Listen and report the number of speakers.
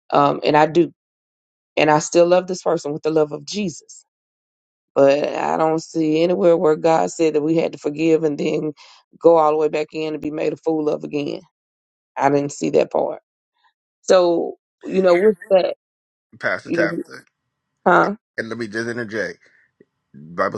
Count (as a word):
two